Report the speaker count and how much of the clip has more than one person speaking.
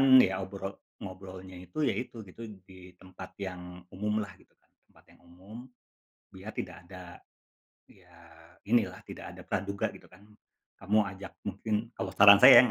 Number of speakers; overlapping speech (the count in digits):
1, no overlap